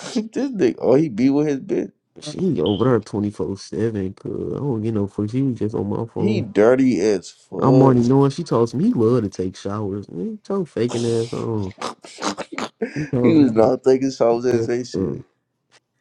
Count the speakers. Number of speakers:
two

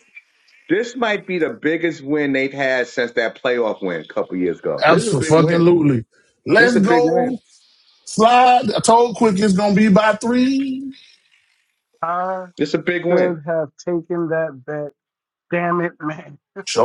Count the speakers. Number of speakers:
three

